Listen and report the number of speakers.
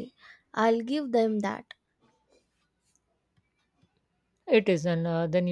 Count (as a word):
two